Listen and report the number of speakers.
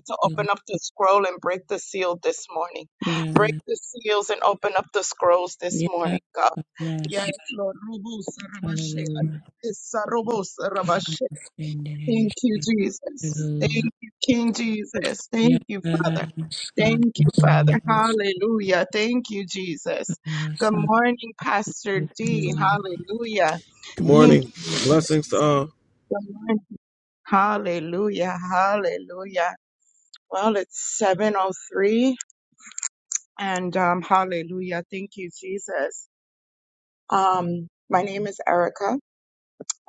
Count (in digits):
3